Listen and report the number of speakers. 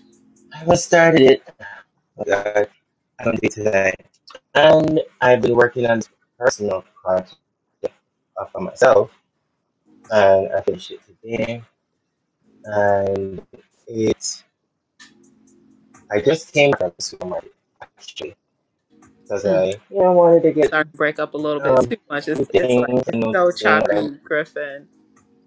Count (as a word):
two